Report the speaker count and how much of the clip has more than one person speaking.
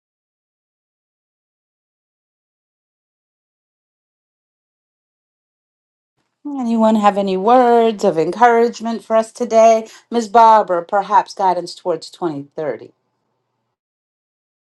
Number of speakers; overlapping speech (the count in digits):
1, no overlap